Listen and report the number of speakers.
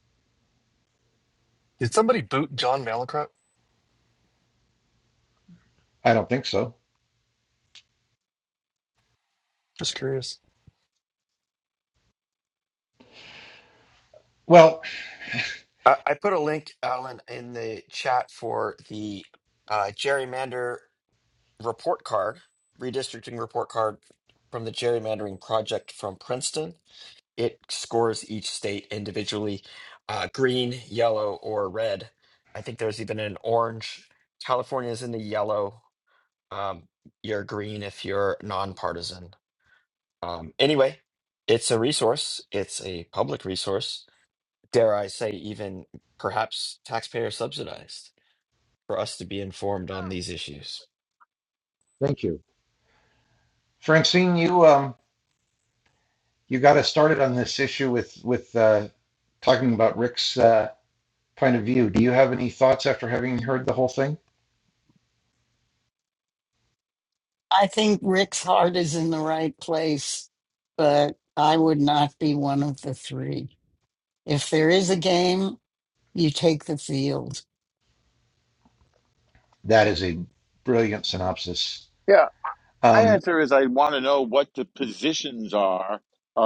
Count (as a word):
five